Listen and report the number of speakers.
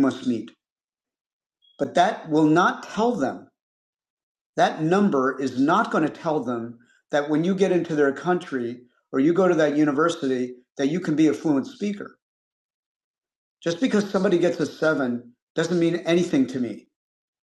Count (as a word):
one